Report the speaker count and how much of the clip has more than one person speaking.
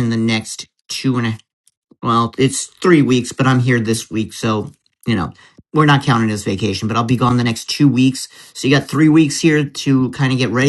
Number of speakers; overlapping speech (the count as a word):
one, no overlap